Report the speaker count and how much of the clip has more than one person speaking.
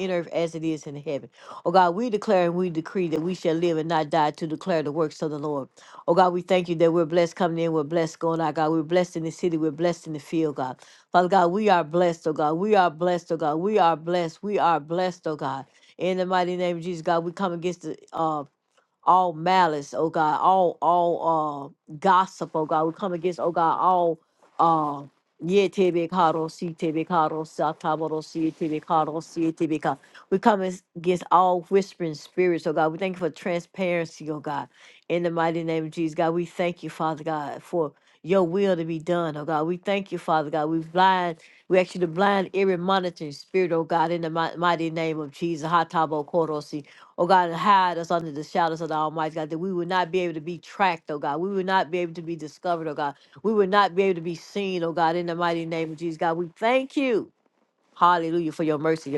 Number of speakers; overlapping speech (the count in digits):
1, no overlap